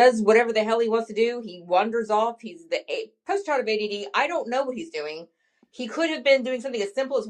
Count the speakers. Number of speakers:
one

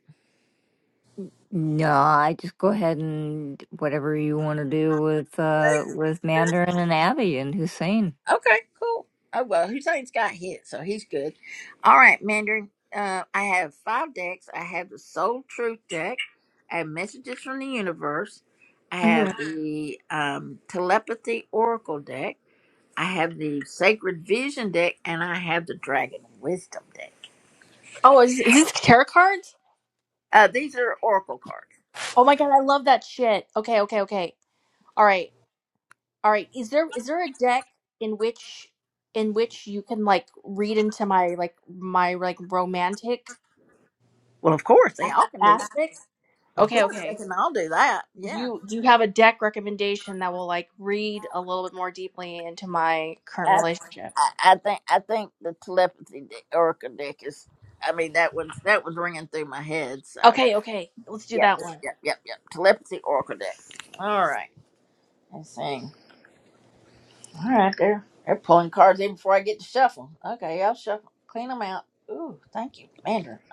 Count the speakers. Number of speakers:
three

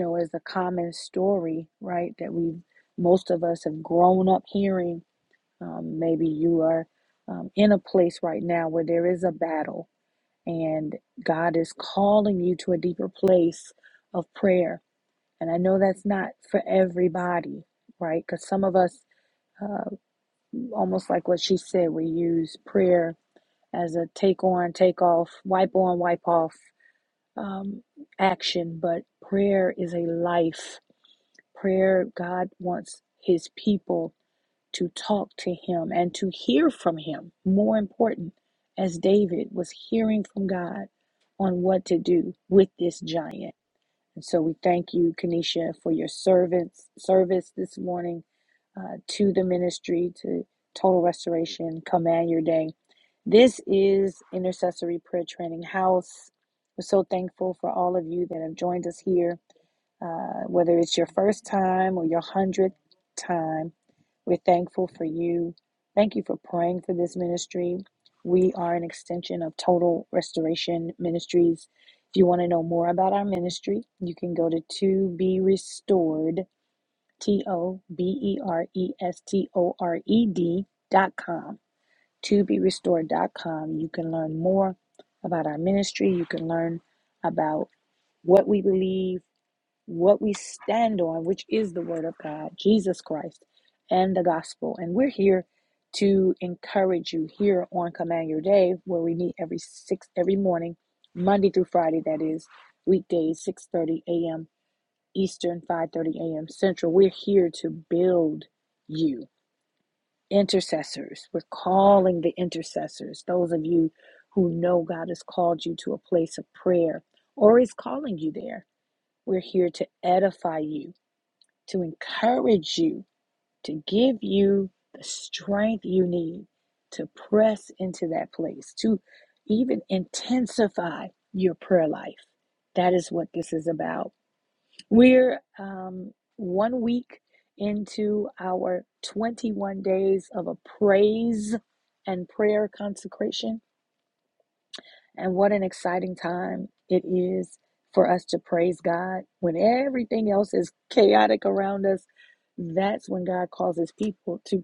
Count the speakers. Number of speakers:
one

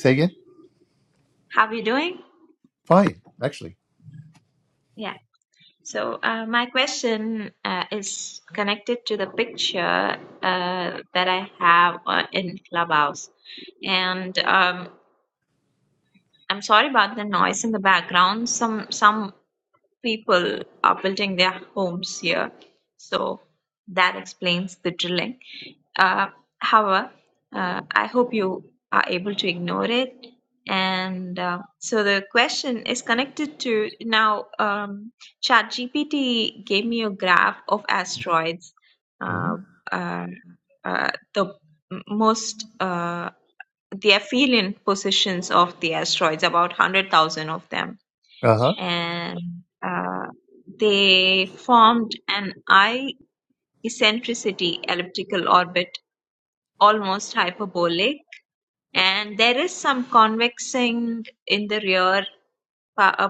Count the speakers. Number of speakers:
two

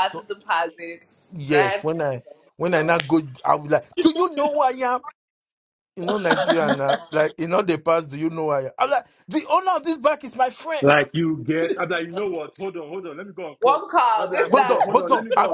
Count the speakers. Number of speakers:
three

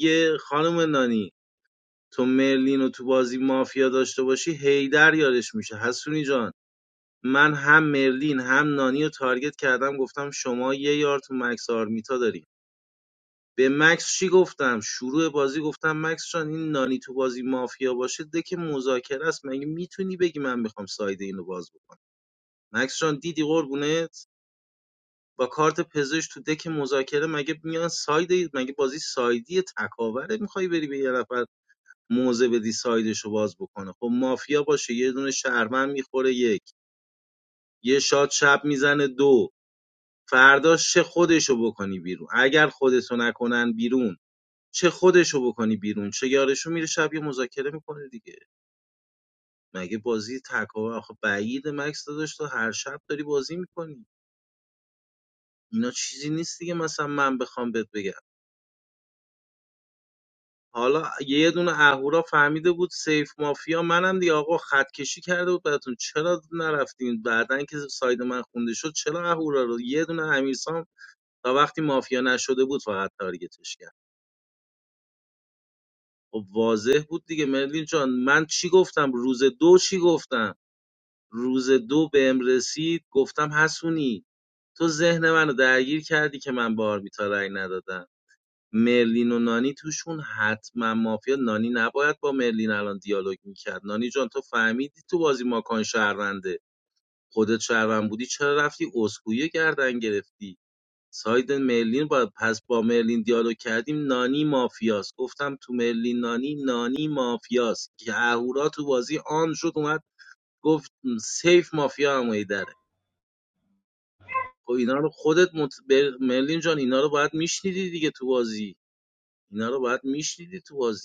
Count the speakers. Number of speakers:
one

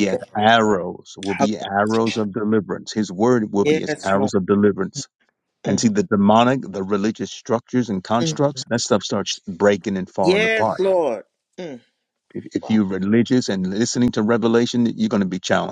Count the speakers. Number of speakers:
two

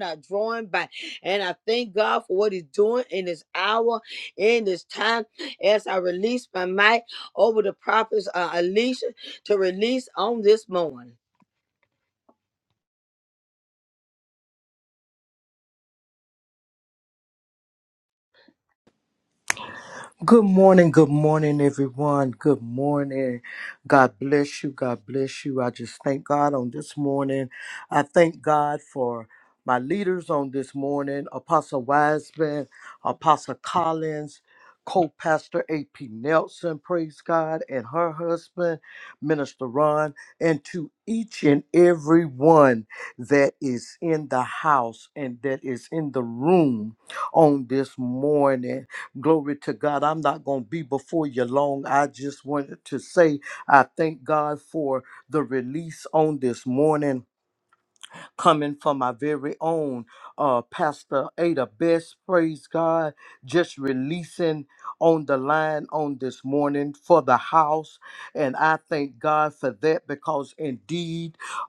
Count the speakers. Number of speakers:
two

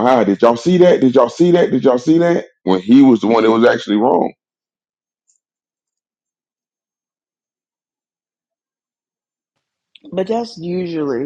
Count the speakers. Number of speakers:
two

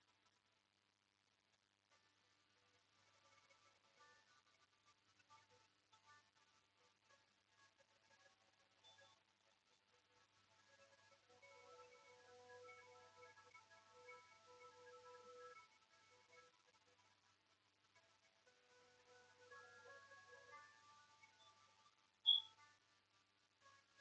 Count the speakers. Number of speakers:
zero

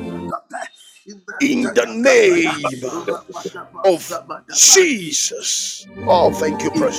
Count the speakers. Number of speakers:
two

